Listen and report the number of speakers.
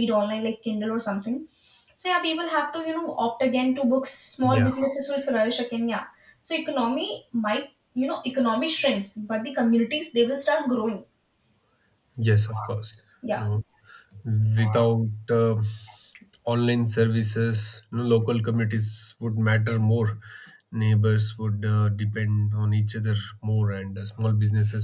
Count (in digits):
2